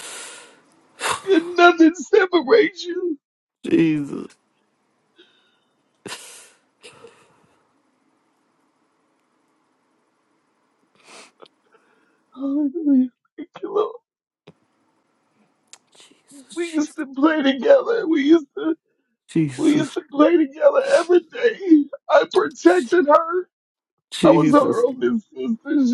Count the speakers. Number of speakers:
two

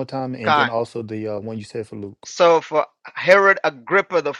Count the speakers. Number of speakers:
two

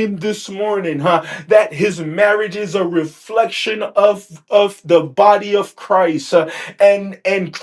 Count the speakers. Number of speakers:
one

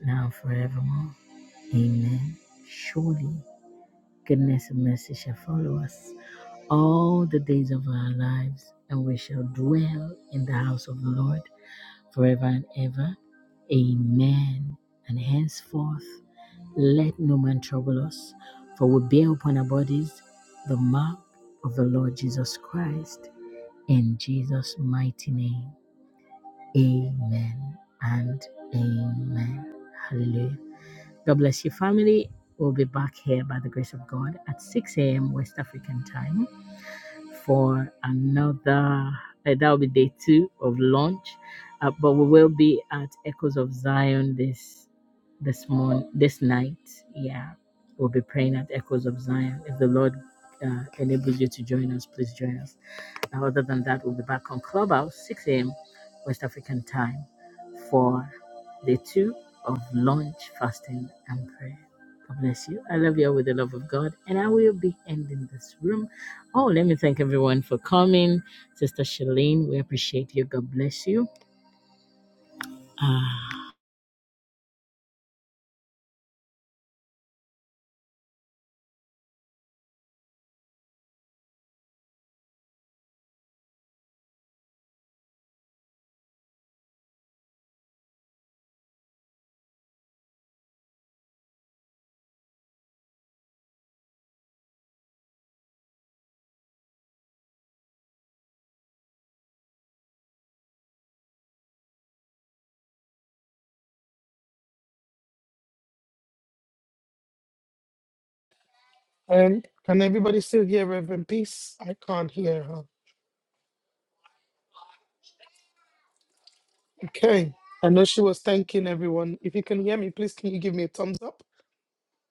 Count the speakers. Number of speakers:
two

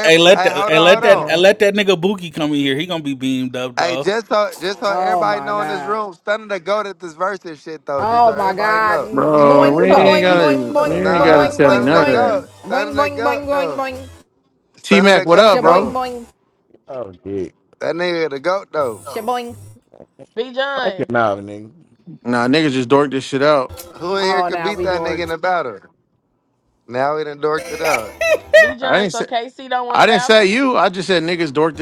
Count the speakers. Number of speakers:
six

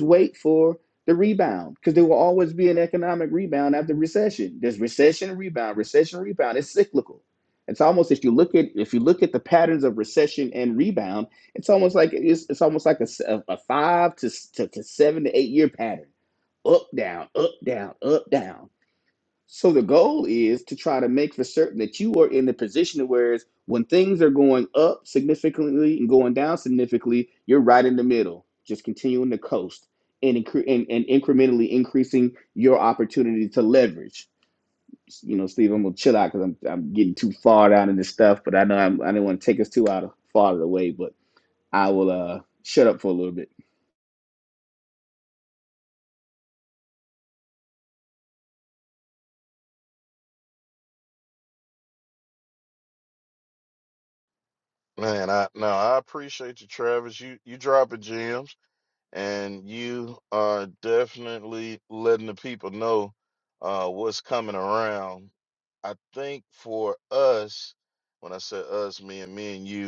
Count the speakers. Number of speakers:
two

